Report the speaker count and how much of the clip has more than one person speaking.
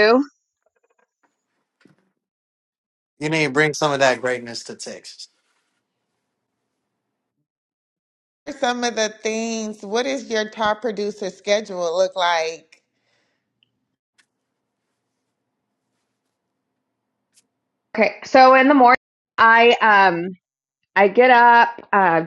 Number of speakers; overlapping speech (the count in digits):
3, no overlap